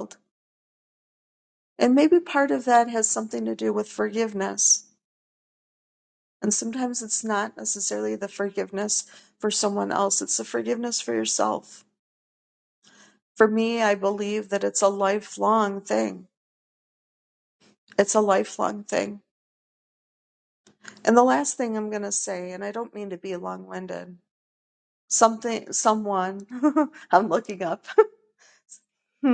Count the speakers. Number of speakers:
1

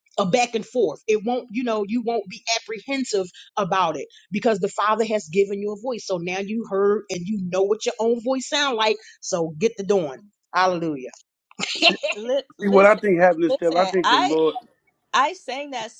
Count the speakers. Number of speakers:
3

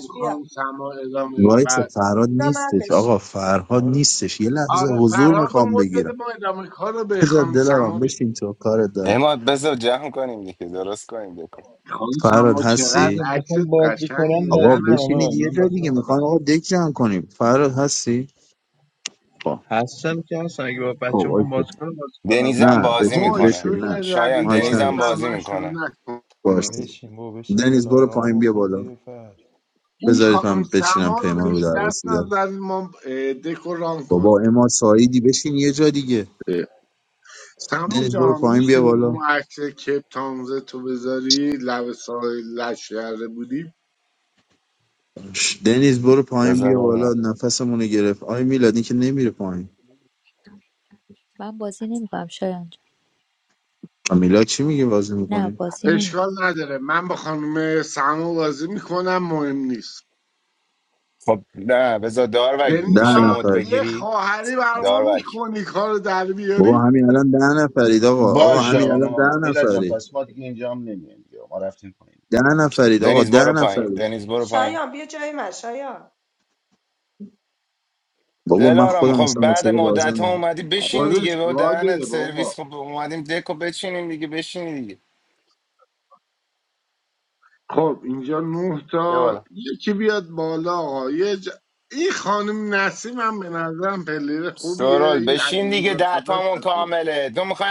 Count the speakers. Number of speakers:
8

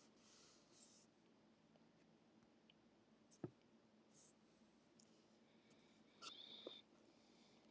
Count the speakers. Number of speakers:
0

